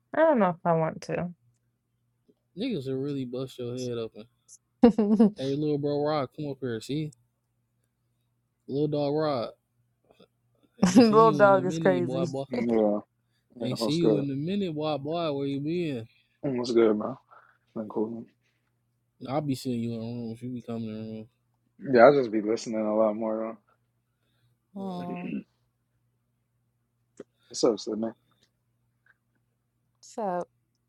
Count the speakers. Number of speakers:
three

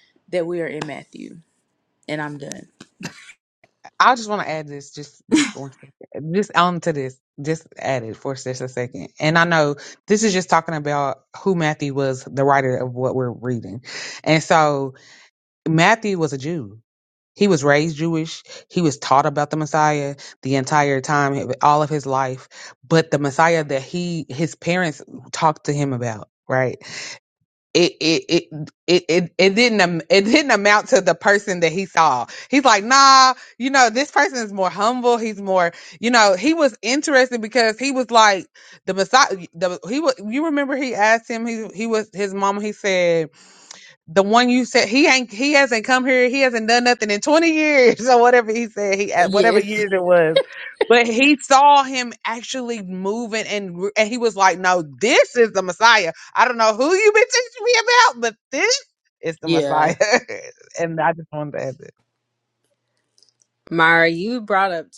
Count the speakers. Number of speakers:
three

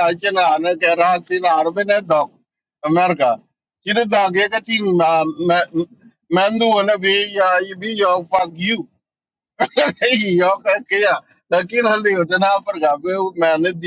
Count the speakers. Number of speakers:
one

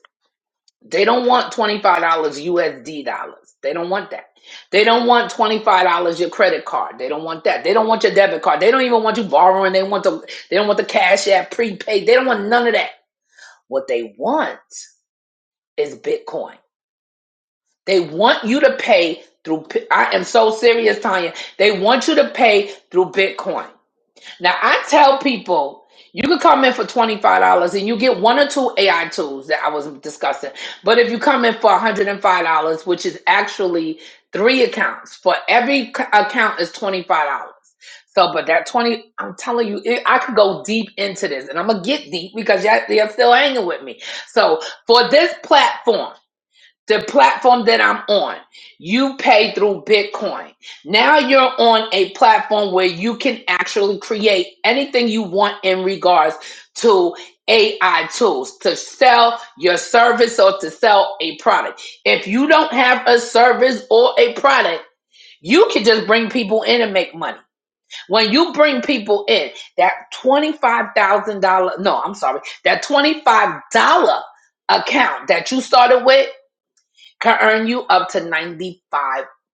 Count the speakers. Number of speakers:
one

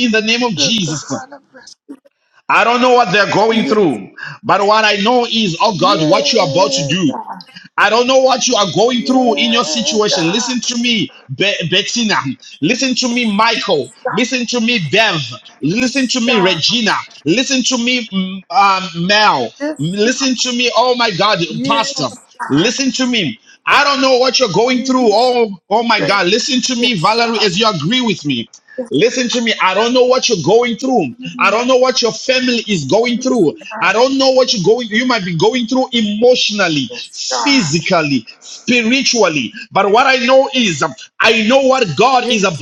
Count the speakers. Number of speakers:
two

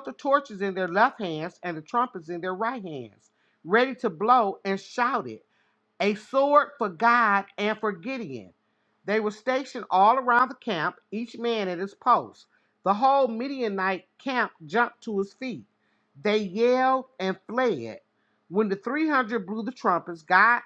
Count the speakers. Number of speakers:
one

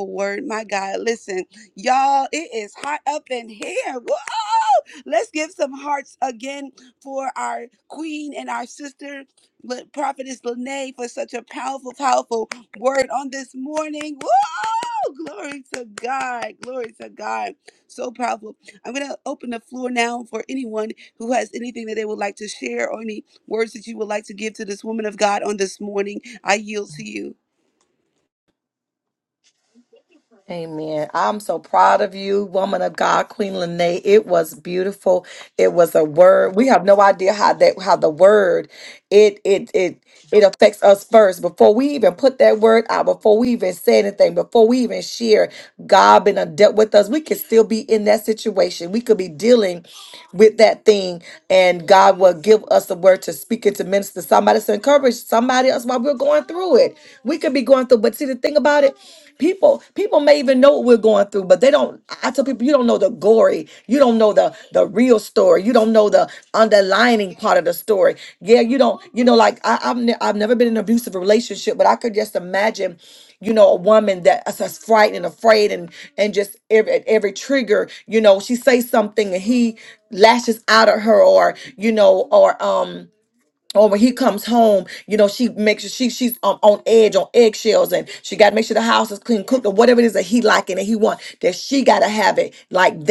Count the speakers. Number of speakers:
two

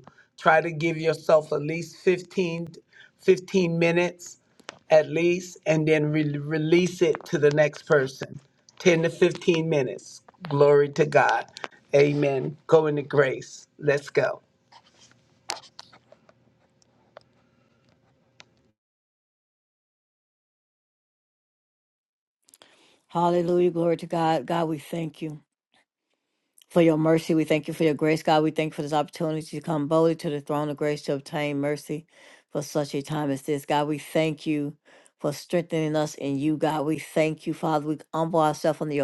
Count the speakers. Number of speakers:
two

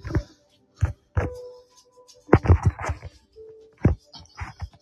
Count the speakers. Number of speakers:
zero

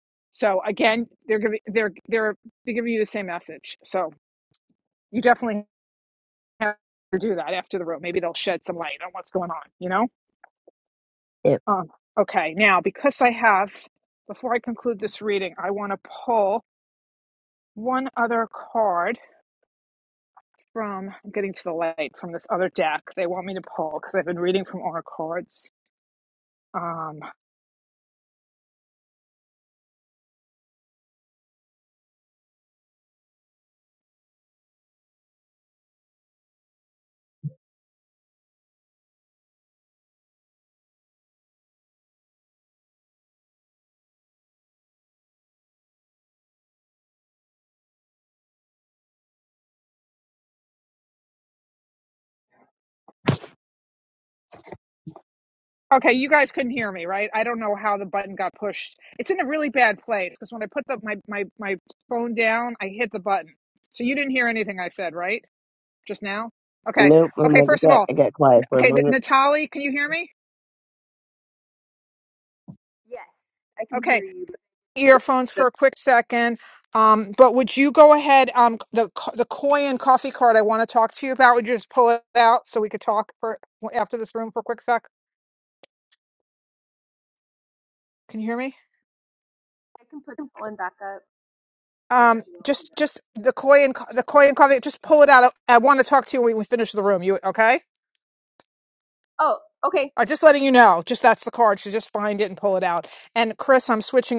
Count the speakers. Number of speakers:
three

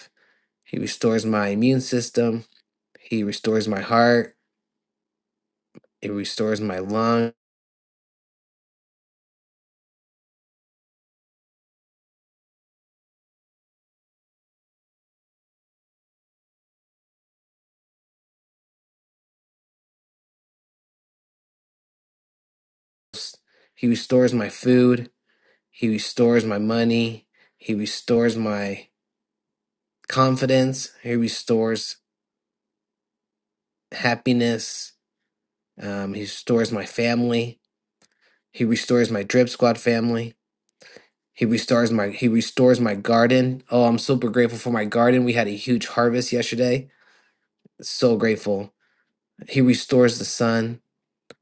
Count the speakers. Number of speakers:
one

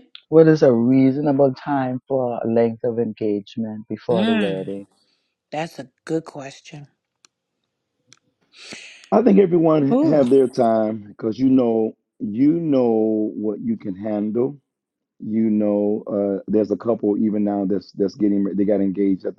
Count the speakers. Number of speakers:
three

